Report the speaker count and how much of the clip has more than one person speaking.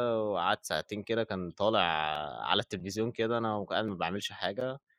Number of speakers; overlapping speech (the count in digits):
1, no overlap